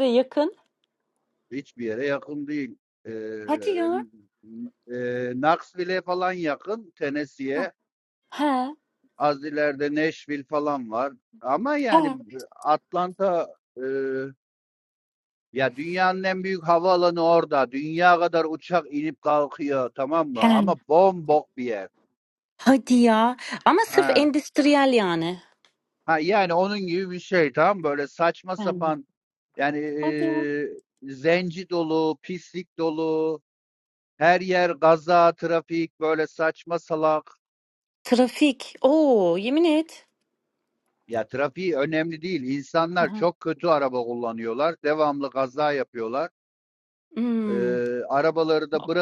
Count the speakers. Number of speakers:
two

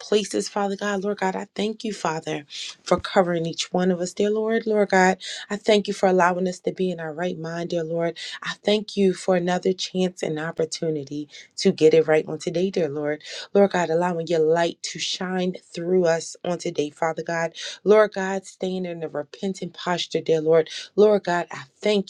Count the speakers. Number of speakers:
one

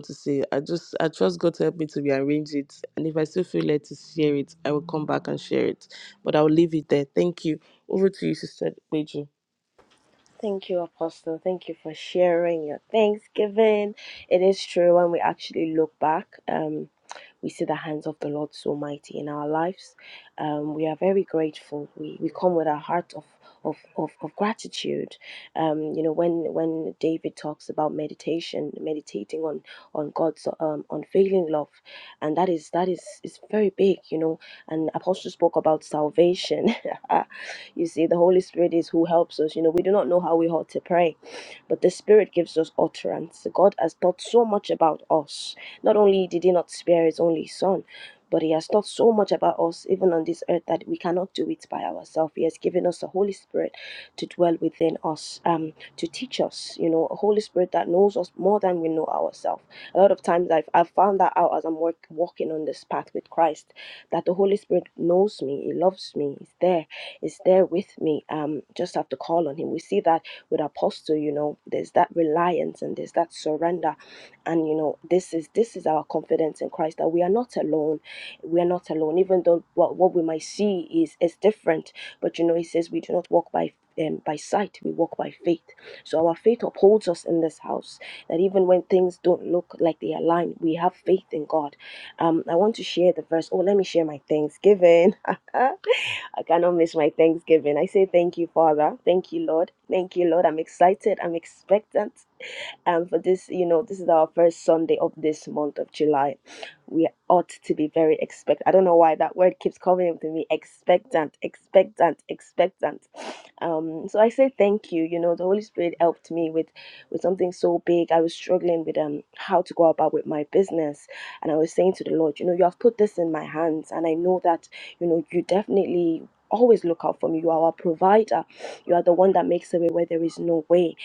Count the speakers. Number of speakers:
two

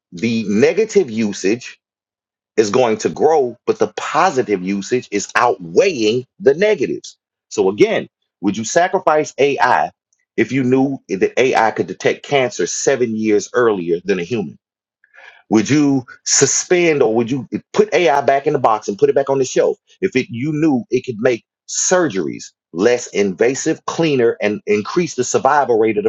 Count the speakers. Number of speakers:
one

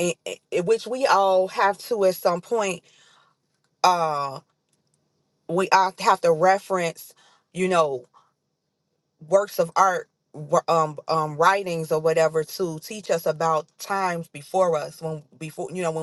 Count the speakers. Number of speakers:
one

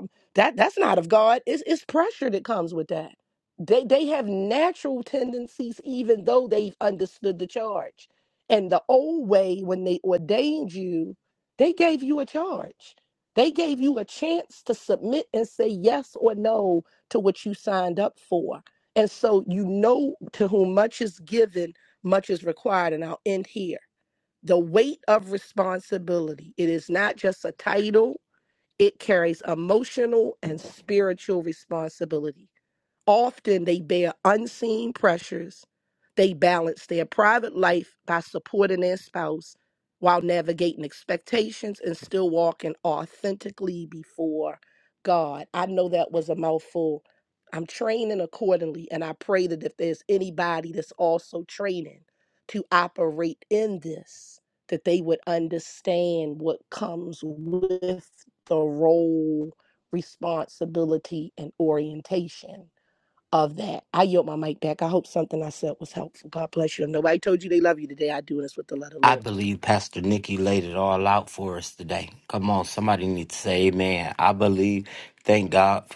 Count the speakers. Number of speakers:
two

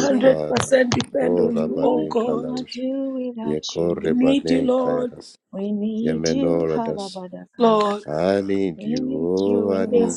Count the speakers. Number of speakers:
three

